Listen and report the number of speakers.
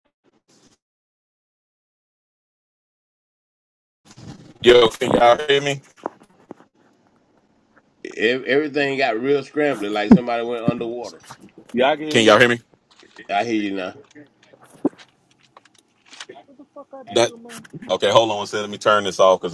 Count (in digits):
3